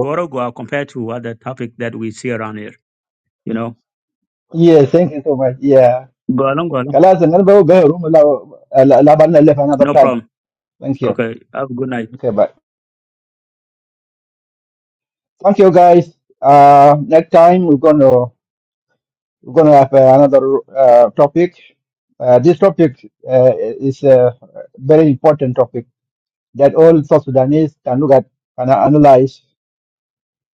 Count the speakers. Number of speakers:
2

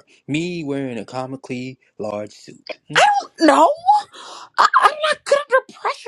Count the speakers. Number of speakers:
2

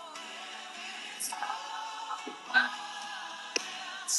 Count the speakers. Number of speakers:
0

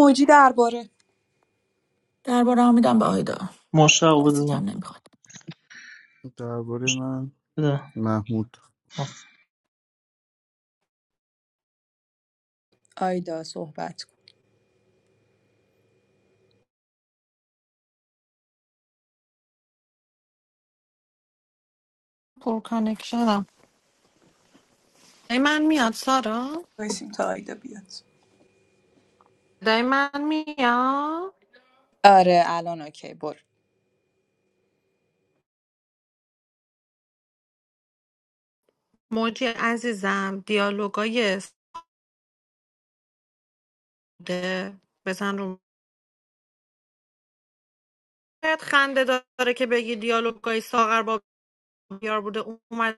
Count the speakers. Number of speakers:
5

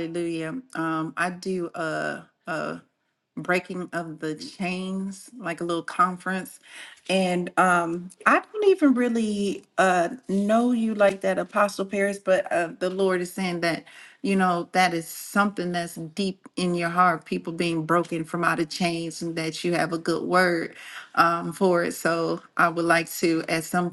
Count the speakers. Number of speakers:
1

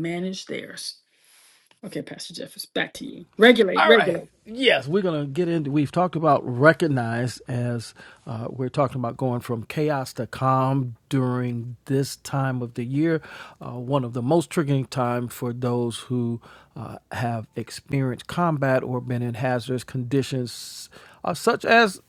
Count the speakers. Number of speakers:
2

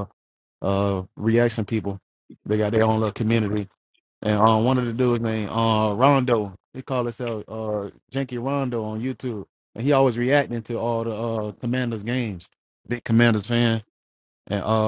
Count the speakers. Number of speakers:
1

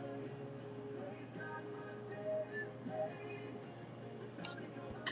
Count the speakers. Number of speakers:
0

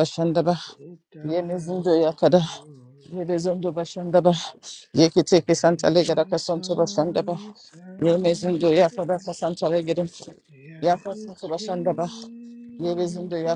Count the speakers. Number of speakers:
2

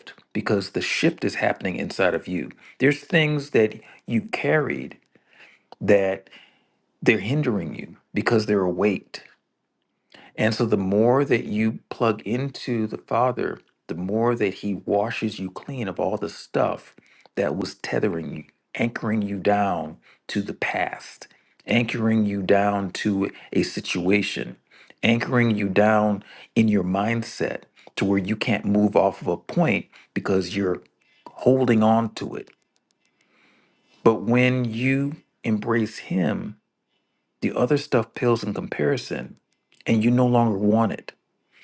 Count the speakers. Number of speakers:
1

